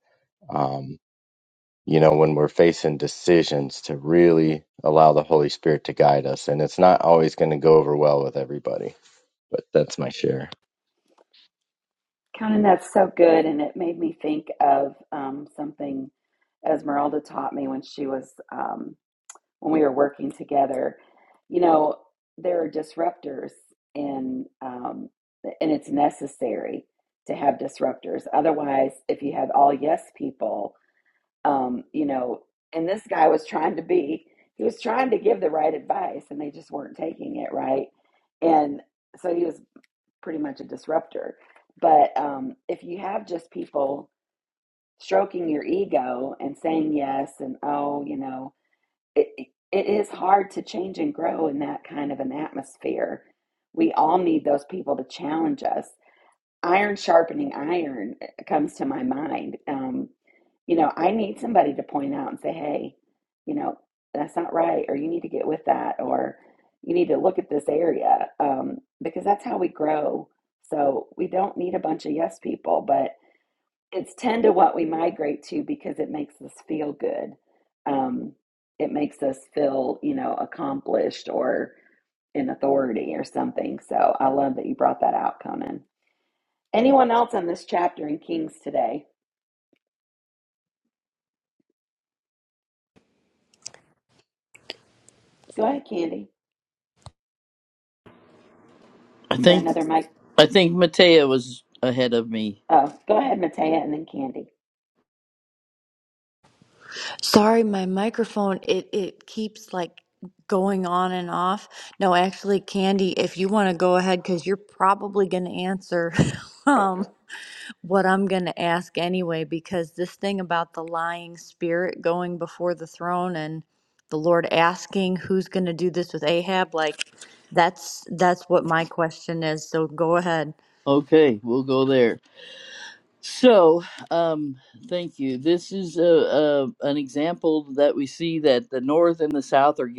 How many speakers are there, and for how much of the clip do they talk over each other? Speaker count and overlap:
four, under 1%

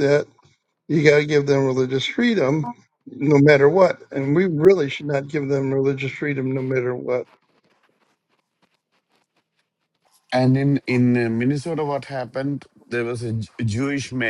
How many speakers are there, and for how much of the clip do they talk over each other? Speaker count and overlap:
two, no overlap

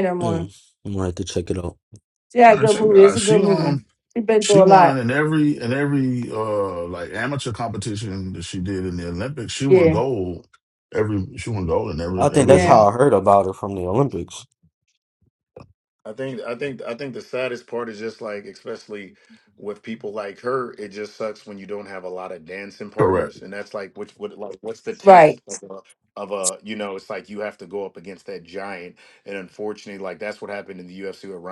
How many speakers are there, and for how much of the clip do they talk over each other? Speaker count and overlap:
four, about 12%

